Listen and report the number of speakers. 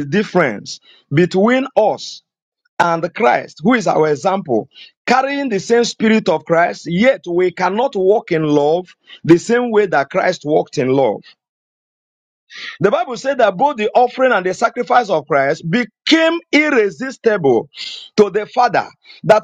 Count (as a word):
one